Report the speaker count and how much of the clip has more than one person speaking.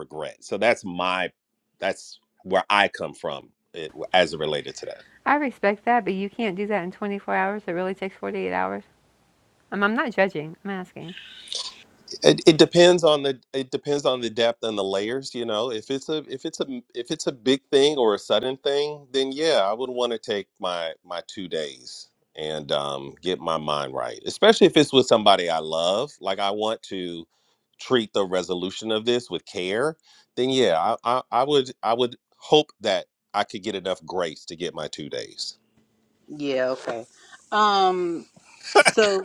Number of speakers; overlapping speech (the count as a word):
three, no overlap